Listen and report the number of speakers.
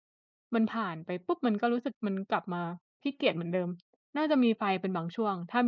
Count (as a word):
one